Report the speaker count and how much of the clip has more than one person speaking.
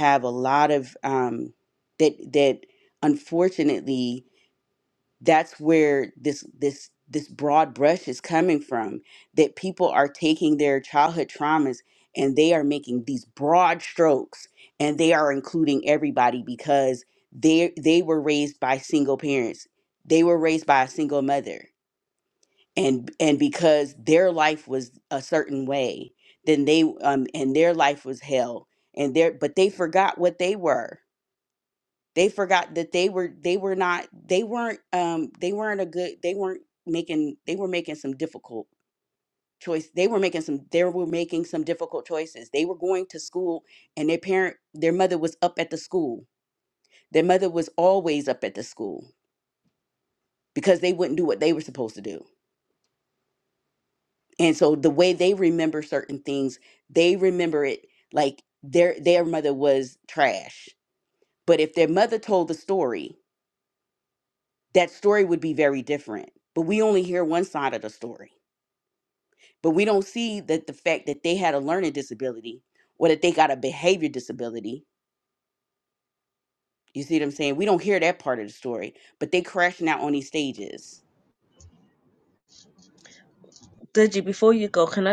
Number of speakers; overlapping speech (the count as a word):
two, no overlap